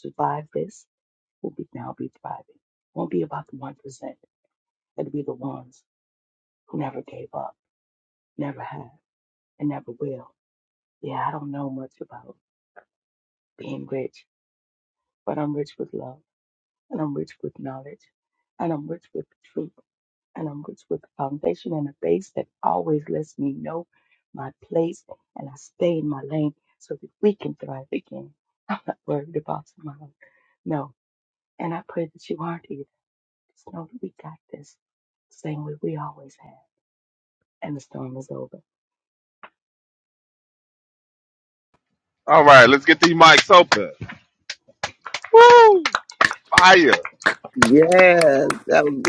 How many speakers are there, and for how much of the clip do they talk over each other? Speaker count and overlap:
3, no overlap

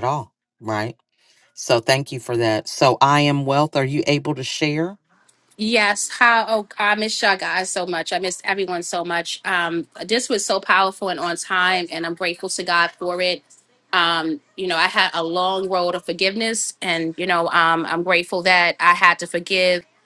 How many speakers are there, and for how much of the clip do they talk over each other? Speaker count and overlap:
2, no overlap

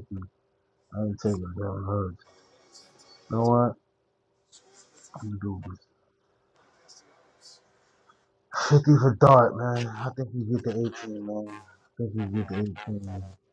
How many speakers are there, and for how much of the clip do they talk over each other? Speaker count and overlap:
1, no overlap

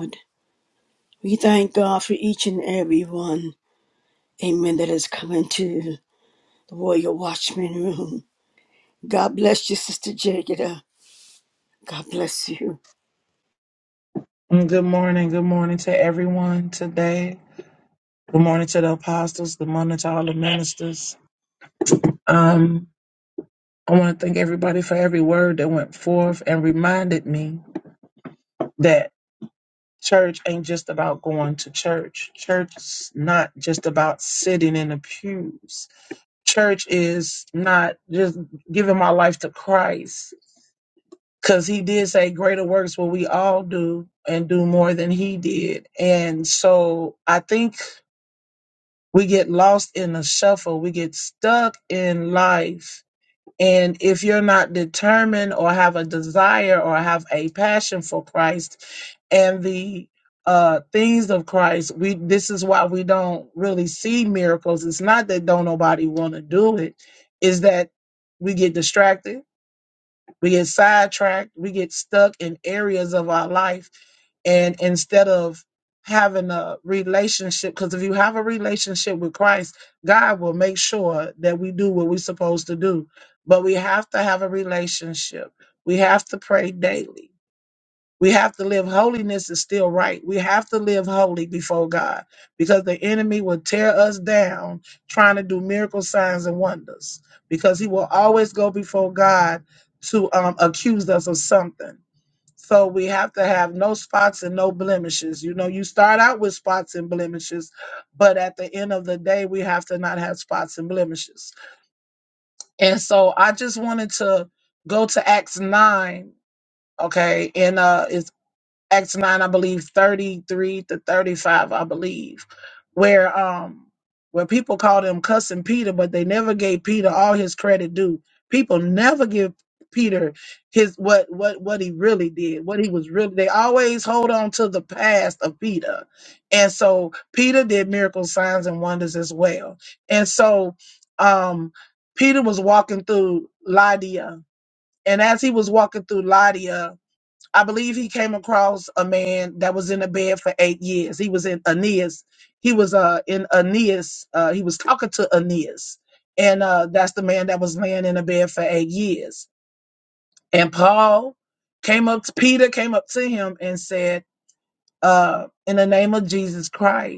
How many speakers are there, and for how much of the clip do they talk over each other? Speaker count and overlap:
2, no overlap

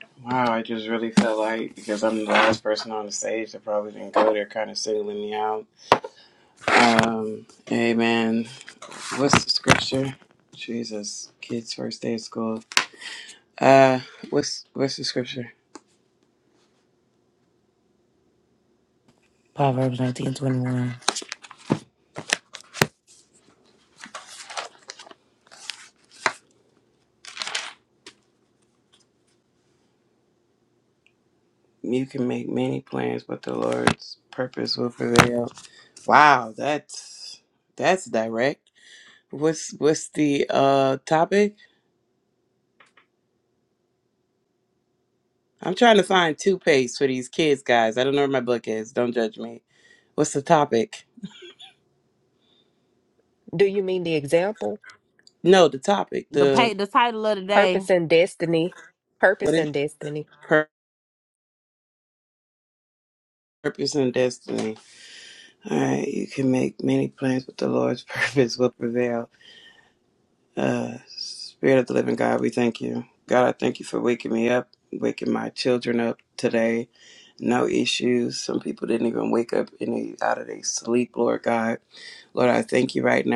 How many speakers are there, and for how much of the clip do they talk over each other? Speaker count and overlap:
4, about 1%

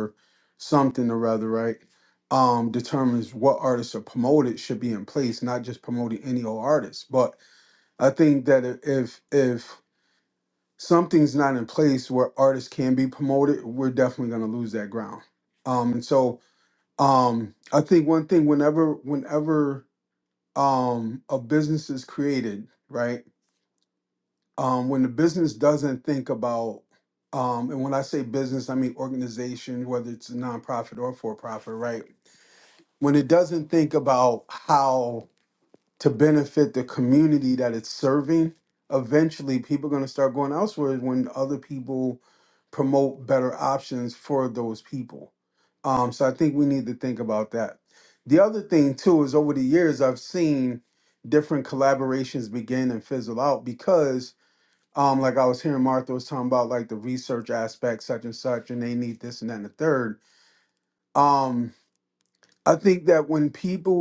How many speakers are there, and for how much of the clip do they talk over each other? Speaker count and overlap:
1, no overlap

